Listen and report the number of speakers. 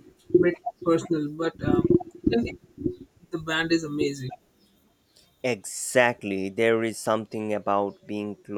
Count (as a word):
two